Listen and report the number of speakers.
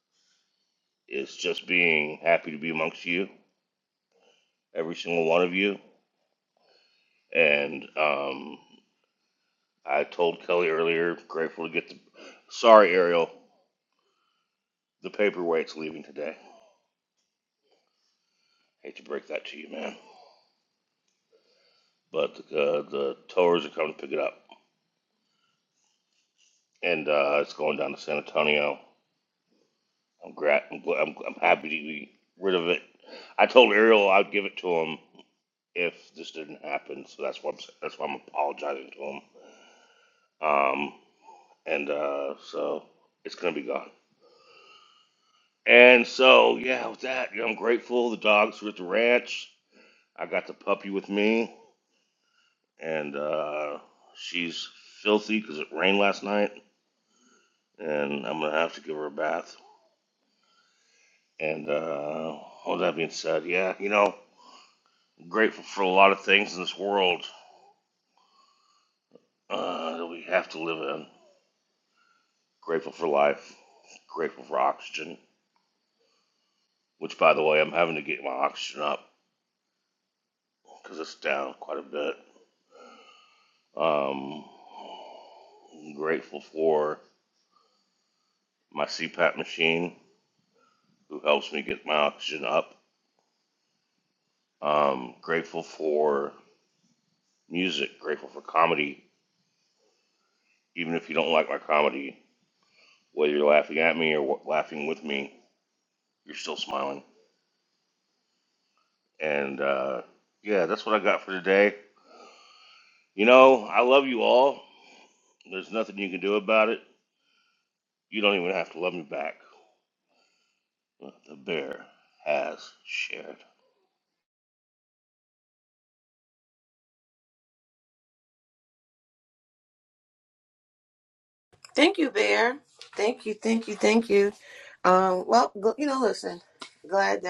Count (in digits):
2